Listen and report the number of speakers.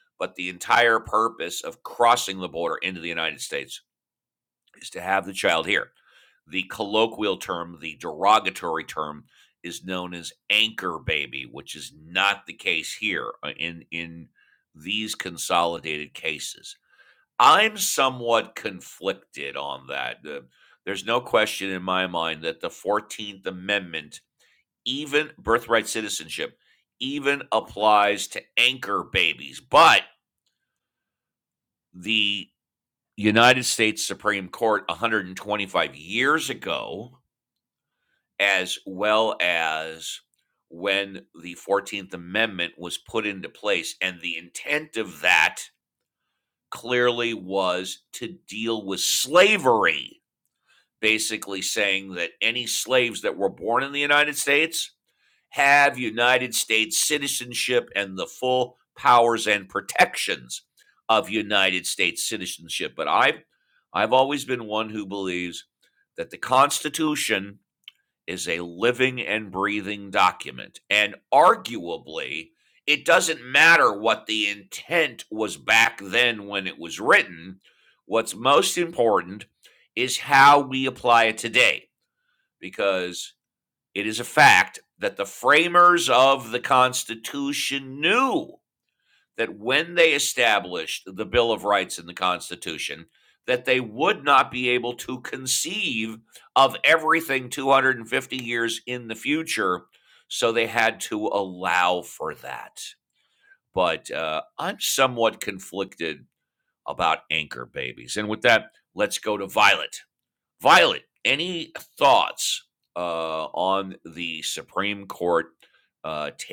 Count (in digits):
1